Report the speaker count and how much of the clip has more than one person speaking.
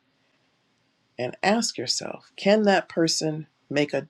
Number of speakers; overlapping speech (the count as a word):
one, no overlap